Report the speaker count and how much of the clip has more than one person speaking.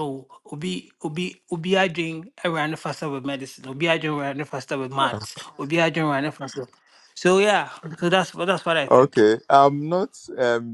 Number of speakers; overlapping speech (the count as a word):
two, about 3%